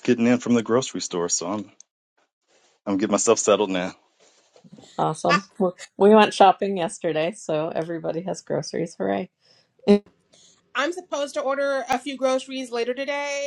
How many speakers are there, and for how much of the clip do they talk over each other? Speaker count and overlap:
3, no overlap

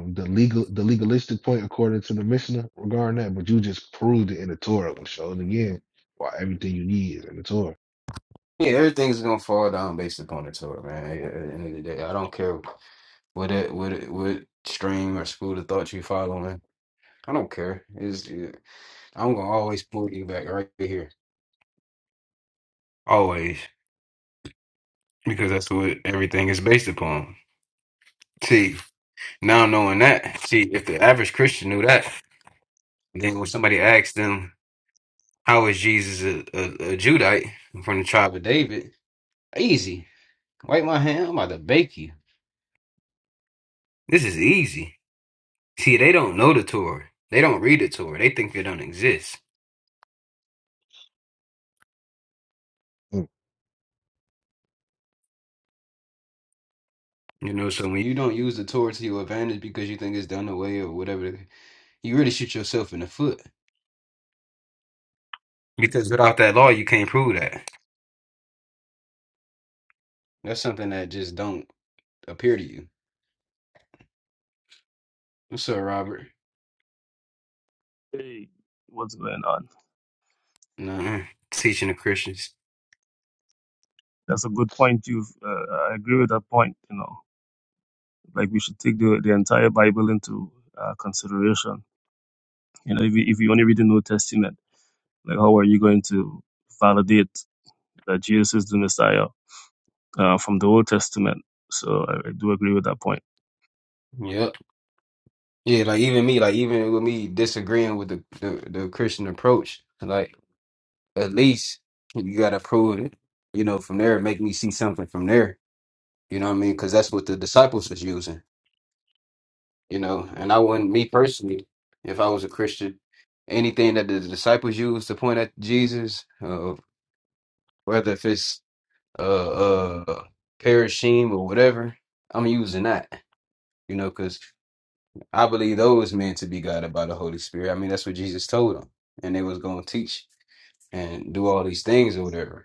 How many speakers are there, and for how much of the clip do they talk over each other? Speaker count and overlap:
3, no overlap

